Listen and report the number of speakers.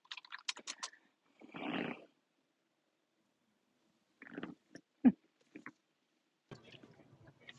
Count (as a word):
zero